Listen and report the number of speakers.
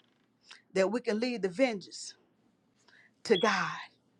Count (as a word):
one